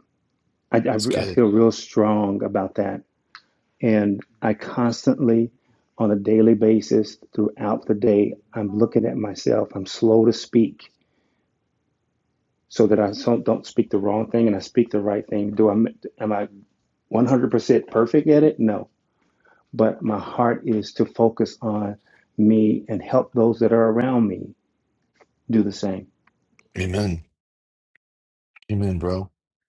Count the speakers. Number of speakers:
2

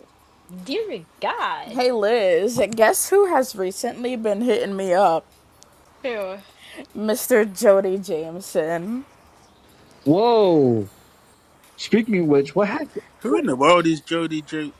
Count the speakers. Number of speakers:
4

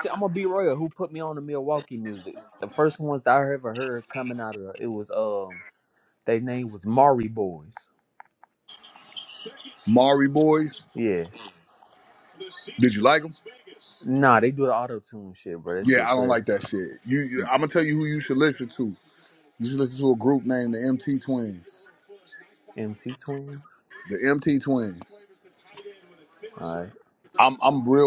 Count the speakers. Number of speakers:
2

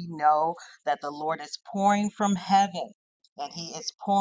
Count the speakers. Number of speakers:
1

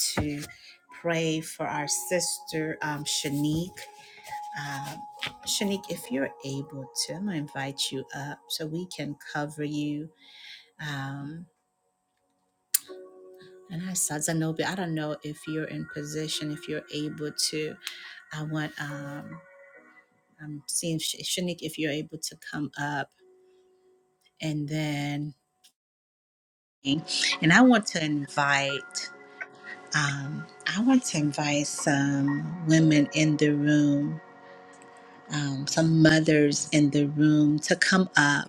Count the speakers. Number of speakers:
1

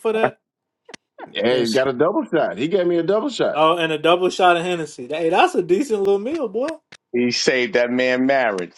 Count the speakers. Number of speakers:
3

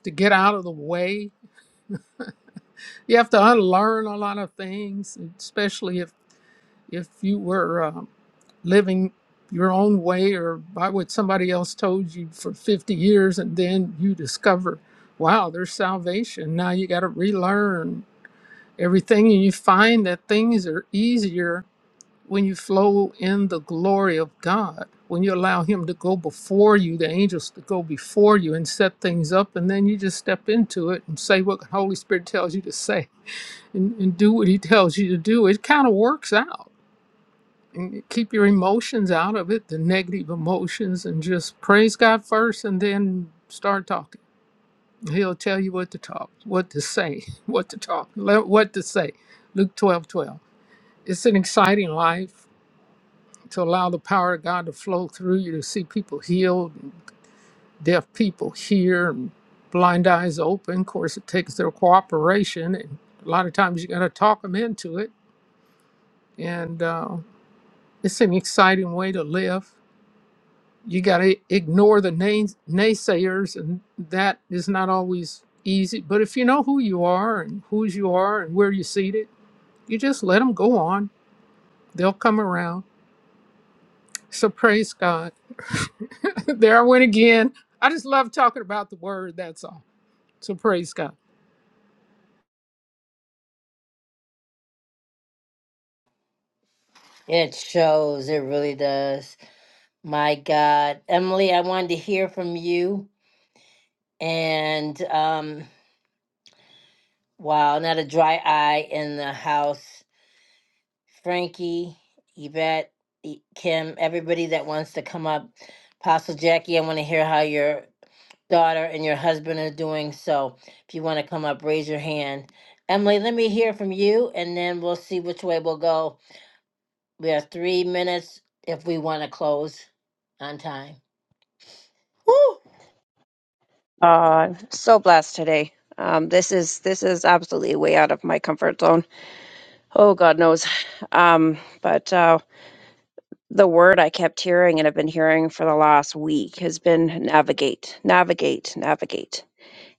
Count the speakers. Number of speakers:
3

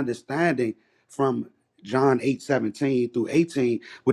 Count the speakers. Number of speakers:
1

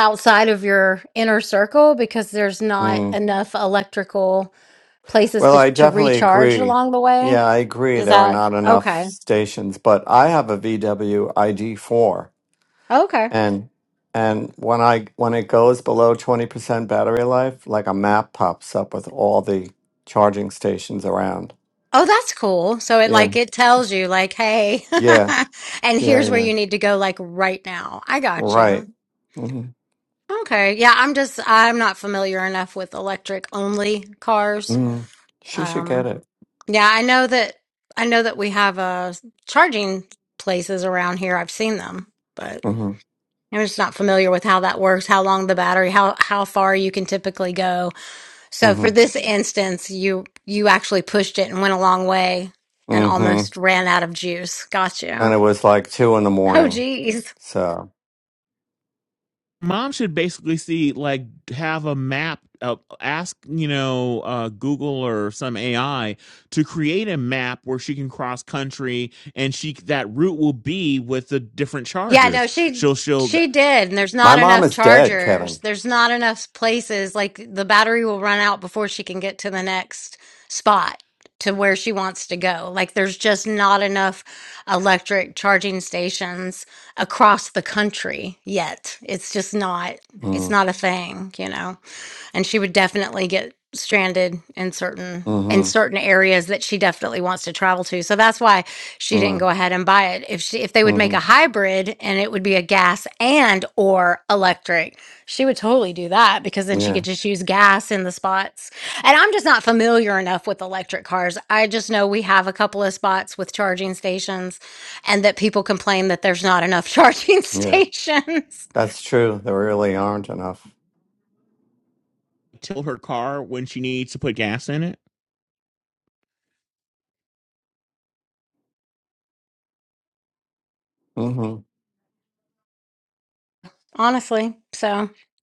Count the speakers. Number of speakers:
3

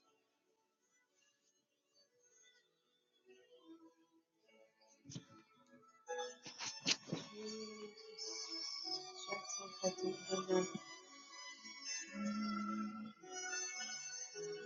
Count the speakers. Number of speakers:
0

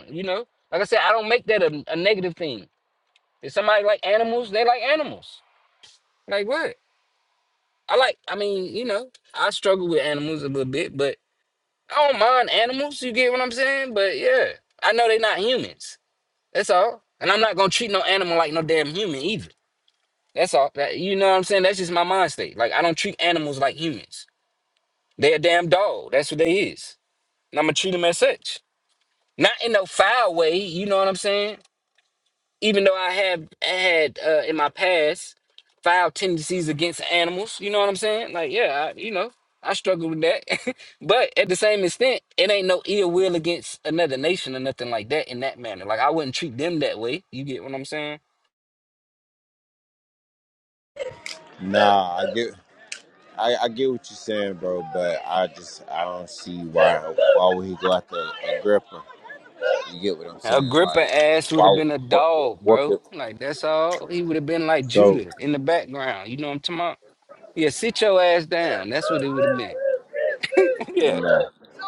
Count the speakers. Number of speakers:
2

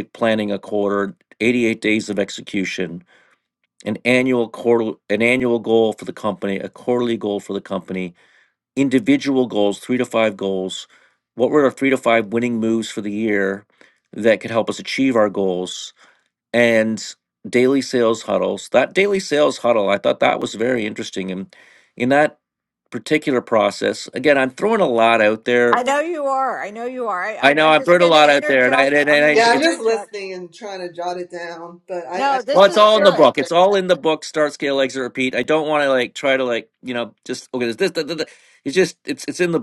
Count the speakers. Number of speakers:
3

